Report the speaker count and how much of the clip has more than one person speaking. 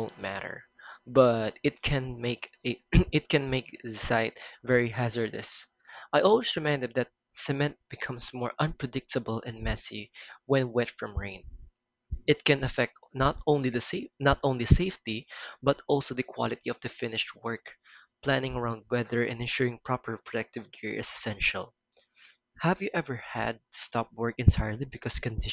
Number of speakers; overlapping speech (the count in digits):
1, no overlap